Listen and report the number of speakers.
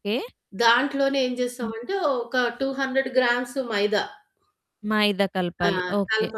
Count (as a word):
two